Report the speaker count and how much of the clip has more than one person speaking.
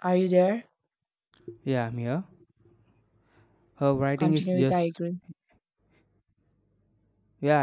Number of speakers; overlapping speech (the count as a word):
two, about 10%